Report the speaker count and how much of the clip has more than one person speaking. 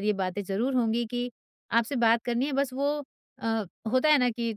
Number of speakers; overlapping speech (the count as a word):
one, no overlap